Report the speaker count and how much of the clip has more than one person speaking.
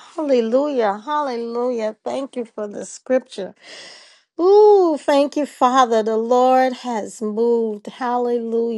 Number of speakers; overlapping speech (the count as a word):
one, no overlap